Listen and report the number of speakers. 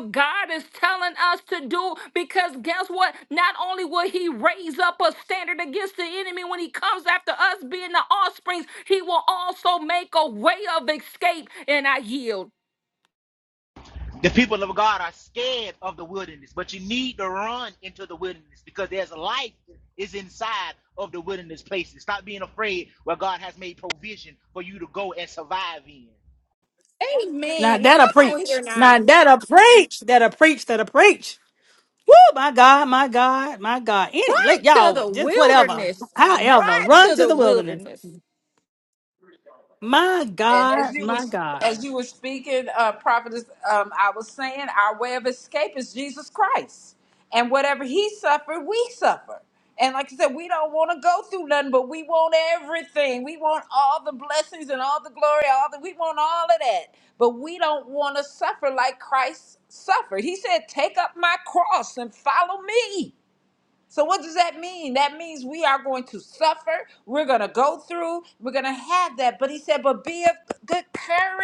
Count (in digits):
4